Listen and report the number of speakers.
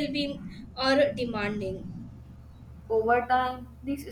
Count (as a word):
two